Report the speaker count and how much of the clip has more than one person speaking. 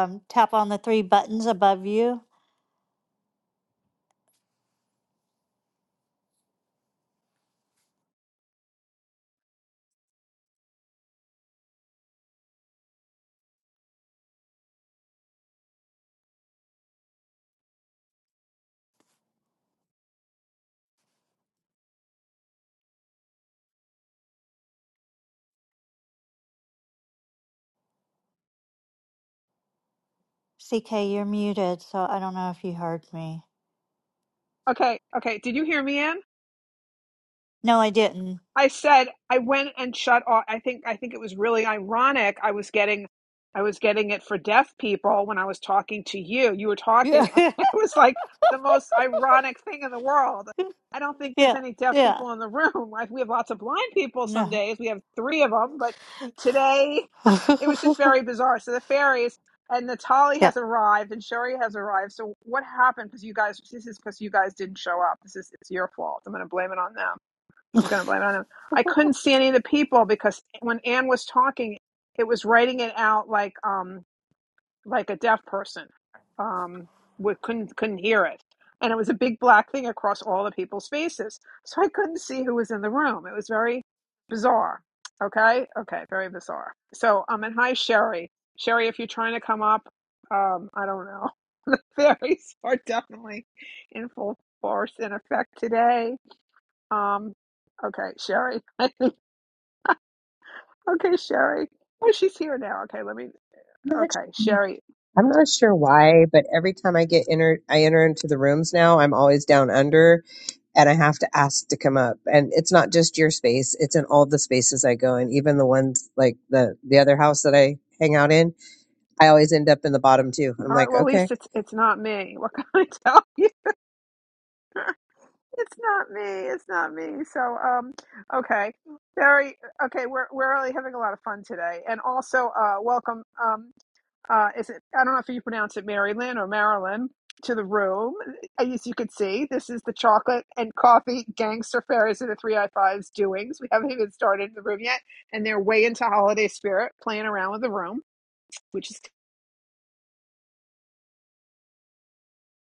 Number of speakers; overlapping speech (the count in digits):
3, about 2%